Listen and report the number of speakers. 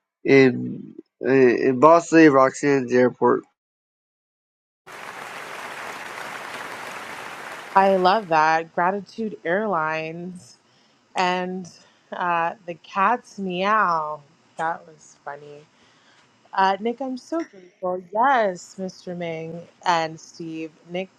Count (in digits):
2